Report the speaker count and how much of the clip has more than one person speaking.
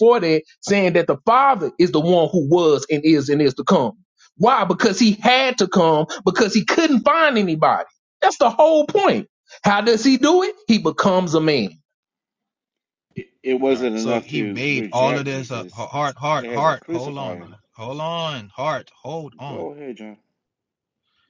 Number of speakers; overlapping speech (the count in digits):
3, about 16%